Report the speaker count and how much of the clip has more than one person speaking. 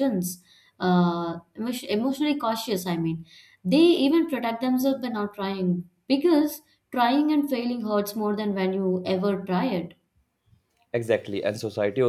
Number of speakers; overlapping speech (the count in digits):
2, no overlap